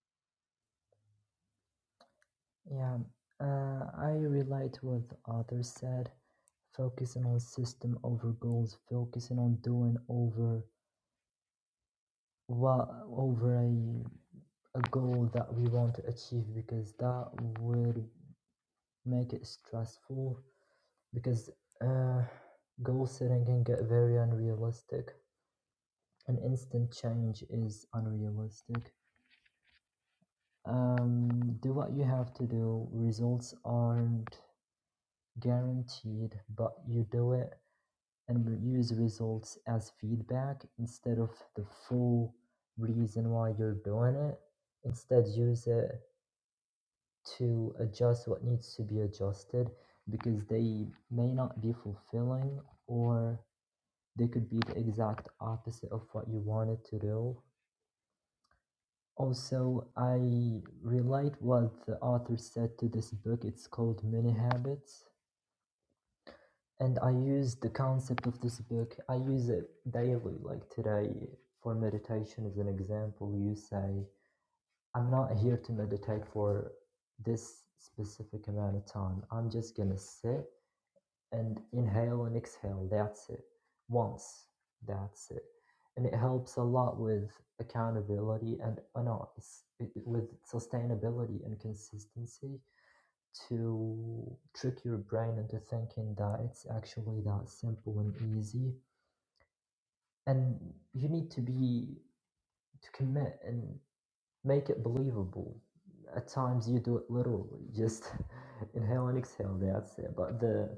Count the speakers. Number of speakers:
one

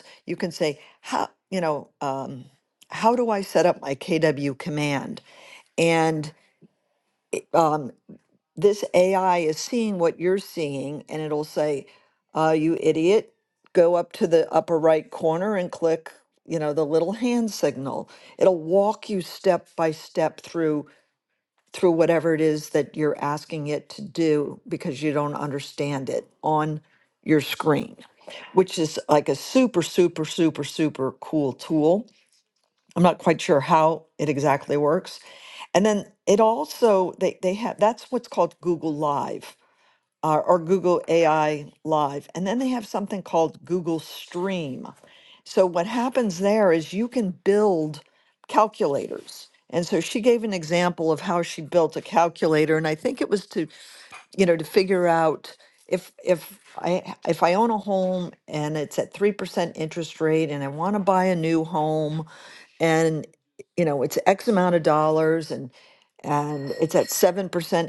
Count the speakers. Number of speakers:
one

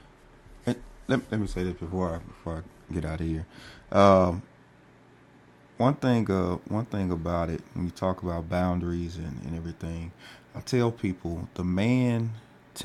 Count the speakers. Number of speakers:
one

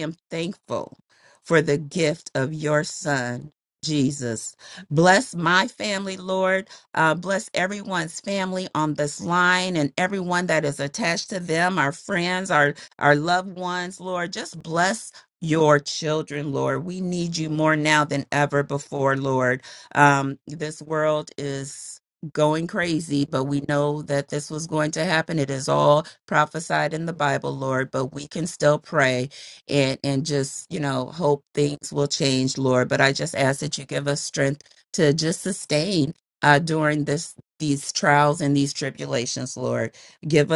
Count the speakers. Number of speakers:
one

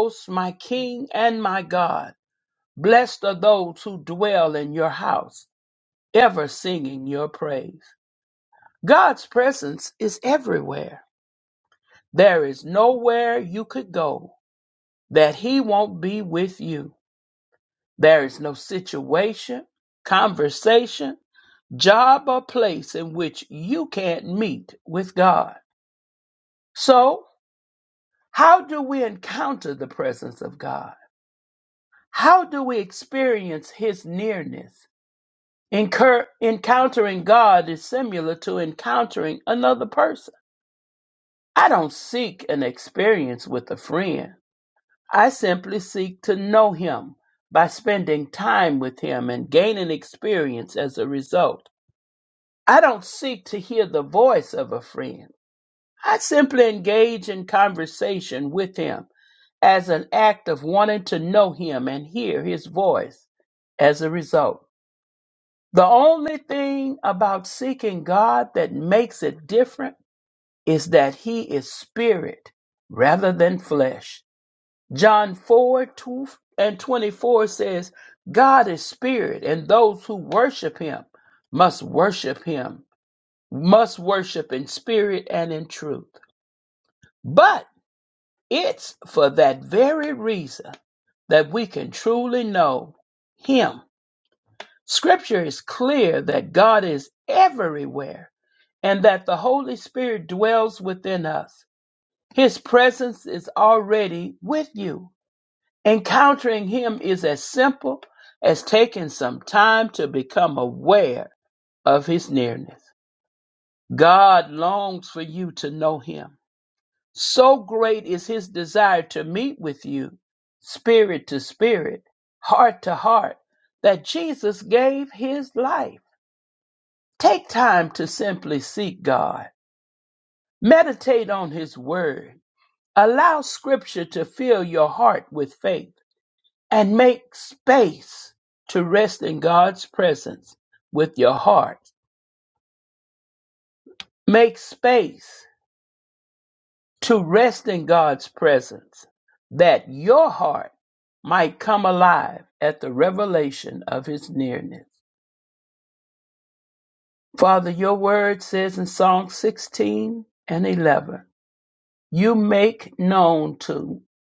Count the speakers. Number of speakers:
one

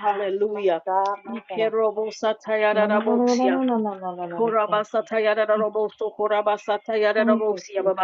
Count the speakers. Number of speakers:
two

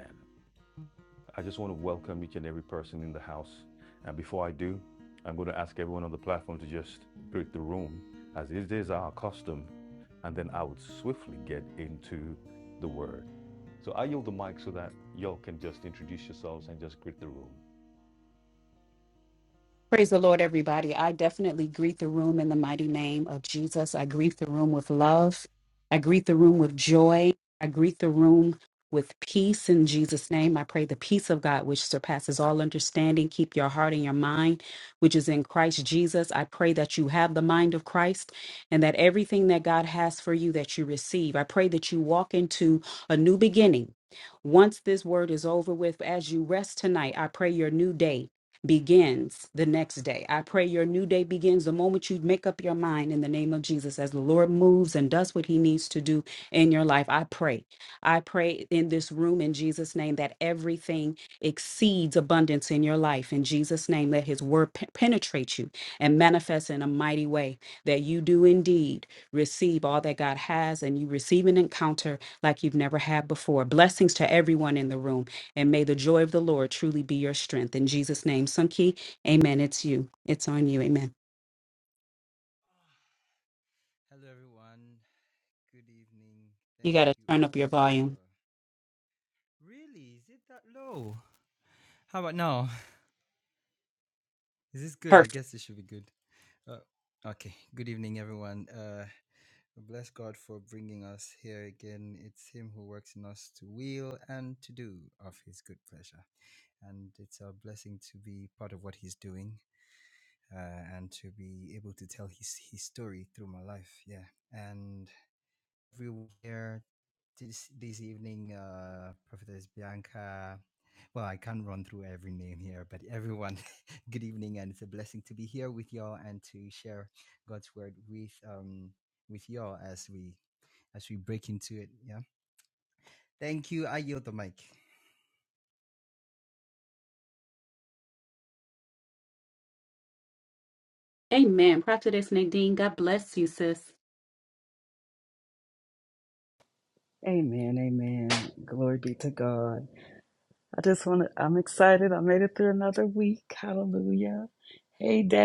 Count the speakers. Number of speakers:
four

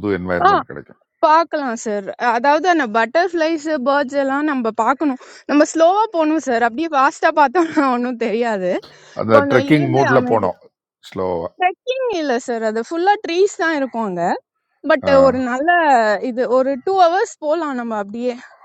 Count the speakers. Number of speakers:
two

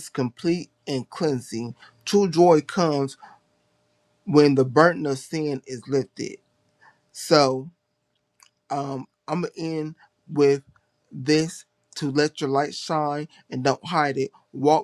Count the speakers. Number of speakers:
one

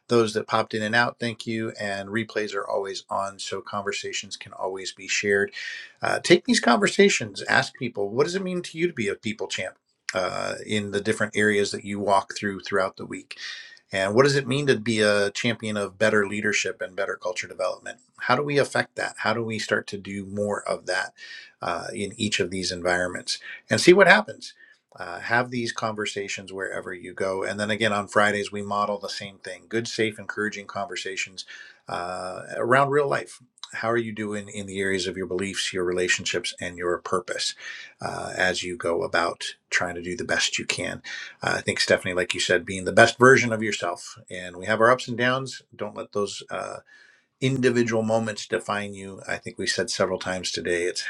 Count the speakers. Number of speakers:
one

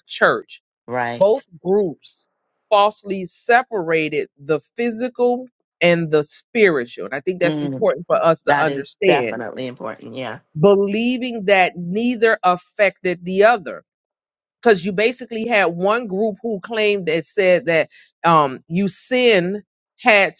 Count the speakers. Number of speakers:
two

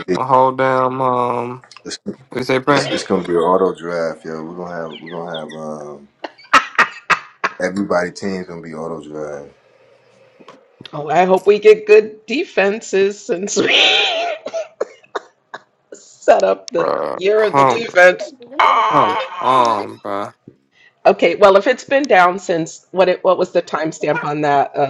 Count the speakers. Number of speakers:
three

